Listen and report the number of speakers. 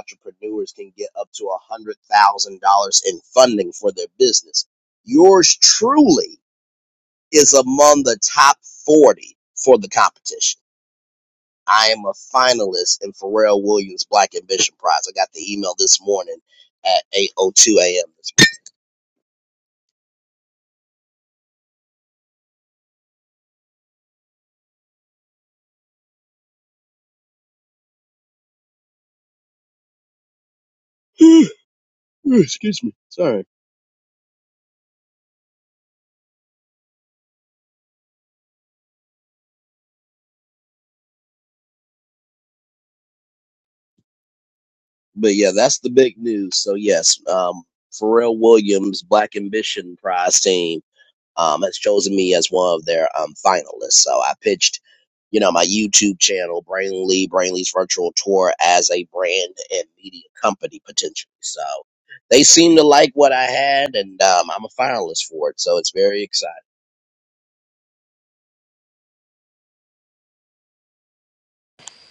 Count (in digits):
1